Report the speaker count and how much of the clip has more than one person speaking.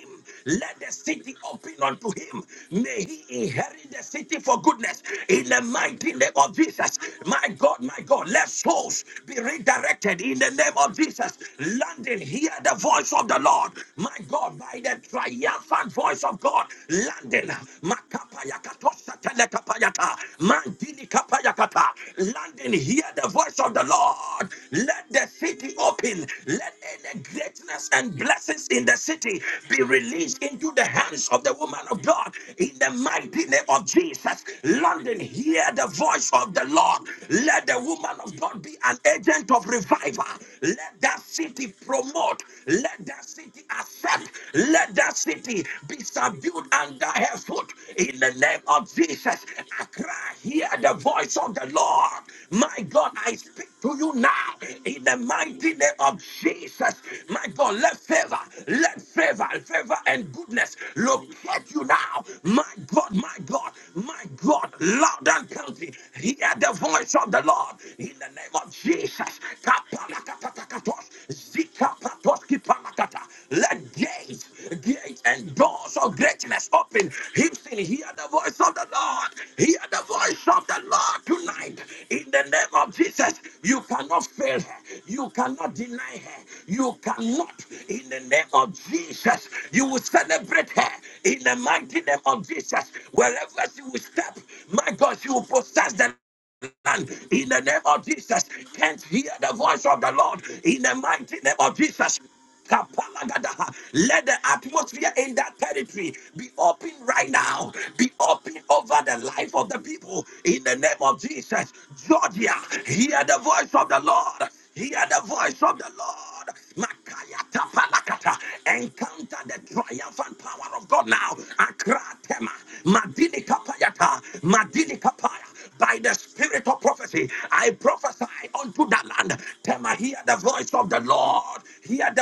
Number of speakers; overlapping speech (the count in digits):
1, no overlap